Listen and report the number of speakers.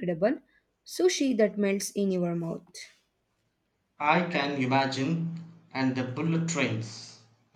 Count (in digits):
2